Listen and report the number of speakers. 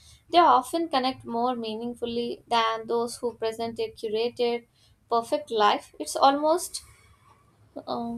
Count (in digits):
1